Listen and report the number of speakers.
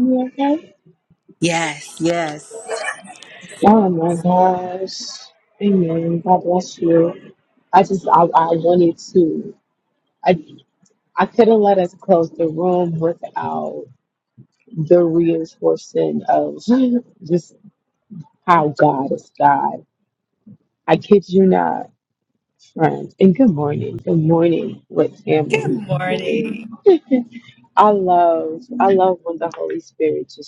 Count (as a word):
two